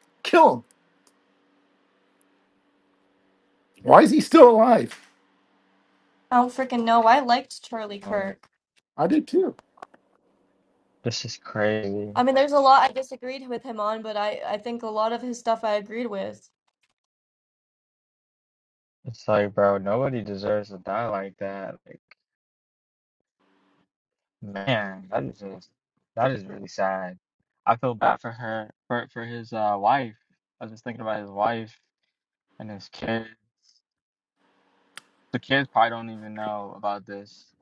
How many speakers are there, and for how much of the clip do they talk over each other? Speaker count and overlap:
3, about 1%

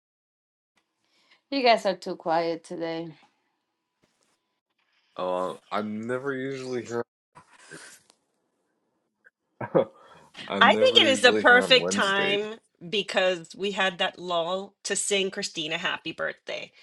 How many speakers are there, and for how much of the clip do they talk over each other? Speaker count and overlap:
3, about 11%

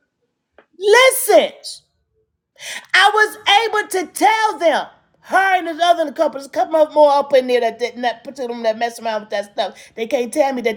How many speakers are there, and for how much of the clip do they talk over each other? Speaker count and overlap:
1, no overlap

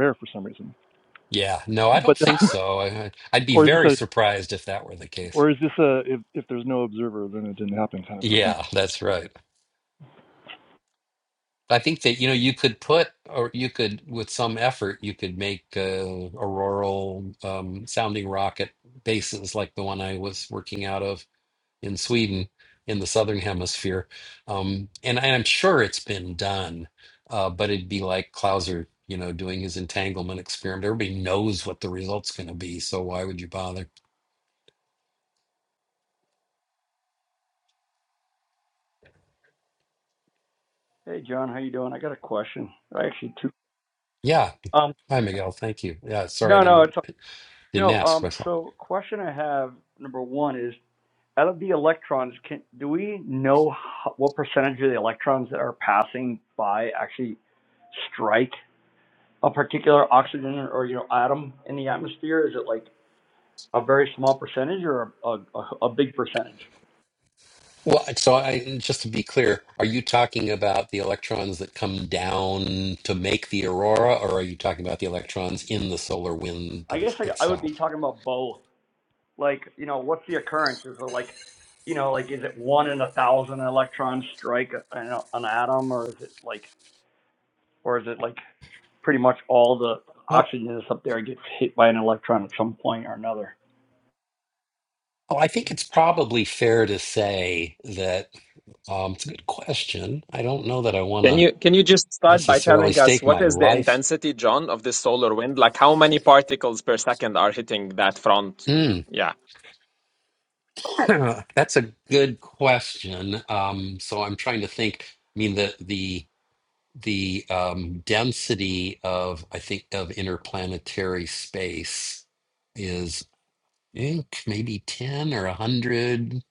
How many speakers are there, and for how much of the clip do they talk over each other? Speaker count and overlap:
4, about 4%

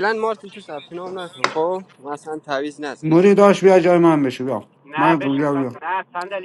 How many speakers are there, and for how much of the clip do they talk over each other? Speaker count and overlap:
3, about 12%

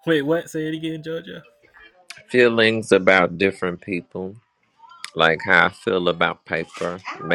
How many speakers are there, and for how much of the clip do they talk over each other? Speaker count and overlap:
2, no overlap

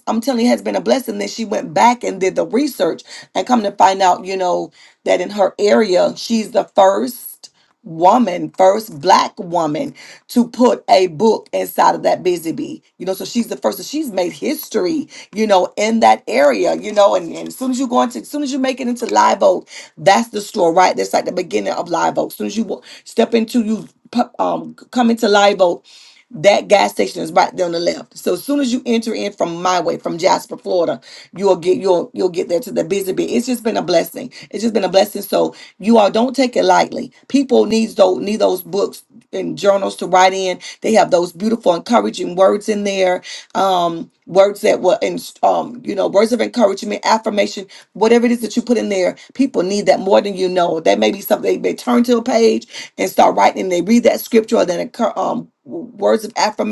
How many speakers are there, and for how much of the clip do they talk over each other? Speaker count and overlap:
1, no overlap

